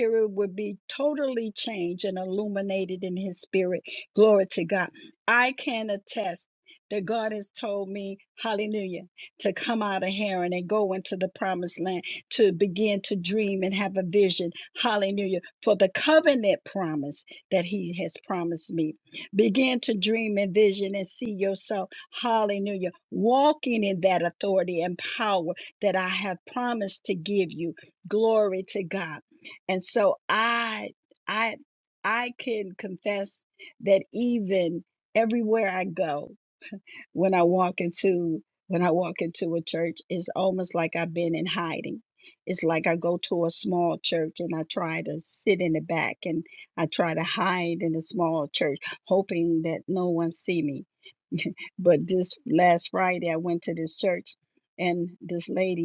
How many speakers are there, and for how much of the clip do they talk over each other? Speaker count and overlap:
1, no overlap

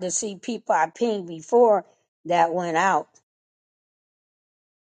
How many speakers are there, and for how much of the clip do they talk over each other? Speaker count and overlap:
1, no overlap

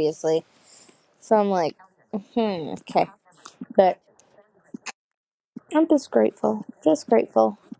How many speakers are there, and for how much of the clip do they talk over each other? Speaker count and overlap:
1, no overlap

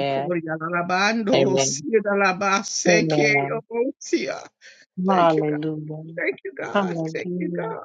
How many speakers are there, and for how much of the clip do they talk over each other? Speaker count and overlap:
2, about 38%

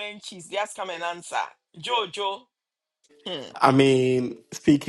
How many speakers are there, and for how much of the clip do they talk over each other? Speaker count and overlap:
2, no overlap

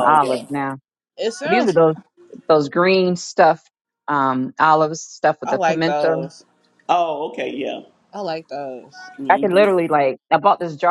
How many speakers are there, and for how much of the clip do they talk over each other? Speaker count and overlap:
3, about 19%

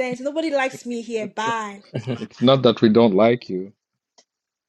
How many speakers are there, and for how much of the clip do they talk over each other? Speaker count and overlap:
2, no overlap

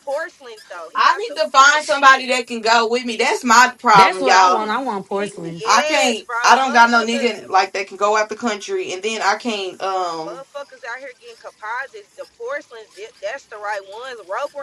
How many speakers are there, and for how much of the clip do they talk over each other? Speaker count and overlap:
3, about 29%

